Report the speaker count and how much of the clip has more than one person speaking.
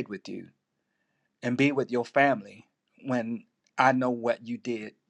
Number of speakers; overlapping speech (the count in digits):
1, no overlap